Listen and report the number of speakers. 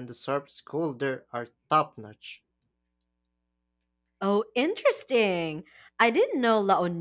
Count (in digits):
2